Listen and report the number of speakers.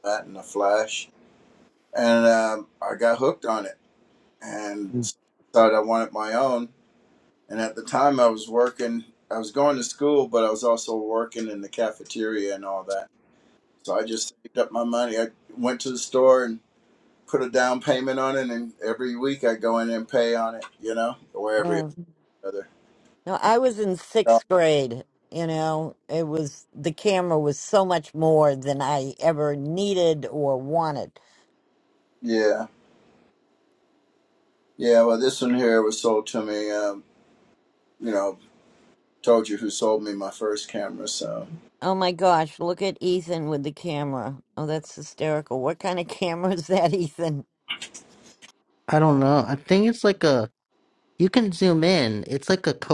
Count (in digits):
3